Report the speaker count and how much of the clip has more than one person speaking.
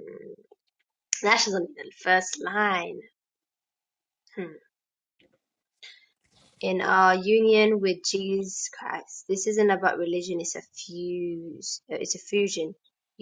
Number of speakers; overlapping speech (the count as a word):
one, no overlap